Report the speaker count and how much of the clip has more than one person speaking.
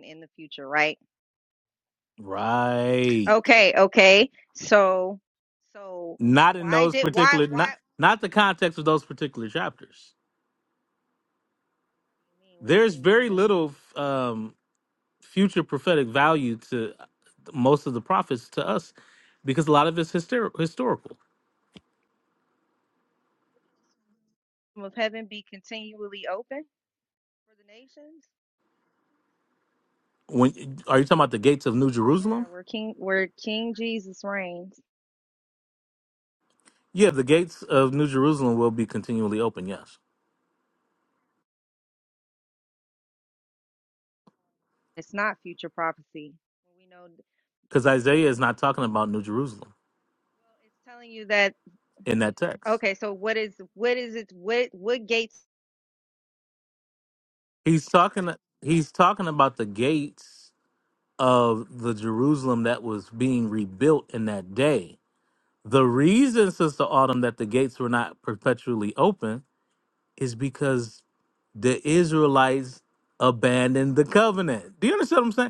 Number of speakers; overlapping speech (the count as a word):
two, about 3%